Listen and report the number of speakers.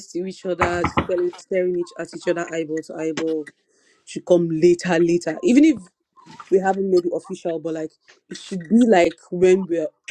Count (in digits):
1